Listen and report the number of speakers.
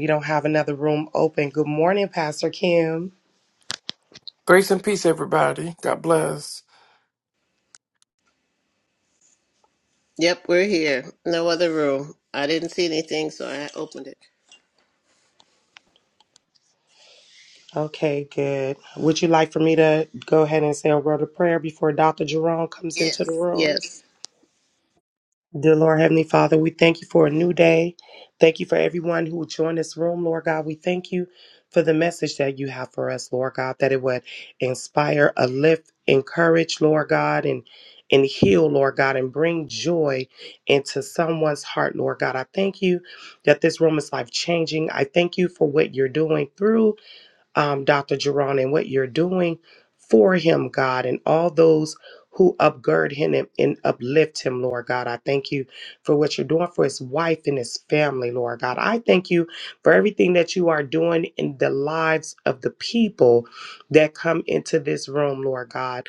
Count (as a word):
three